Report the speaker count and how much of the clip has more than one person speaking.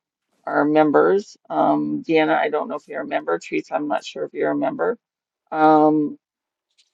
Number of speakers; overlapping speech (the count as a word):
one, no overlap